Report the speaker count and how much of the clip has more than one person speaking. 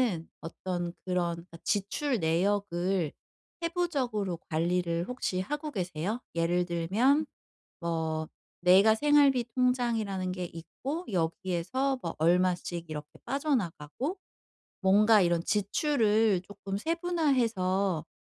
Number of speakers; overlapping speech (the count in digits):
1, no overlap